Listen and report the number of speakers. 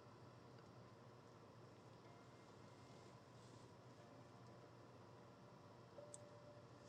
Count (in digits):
0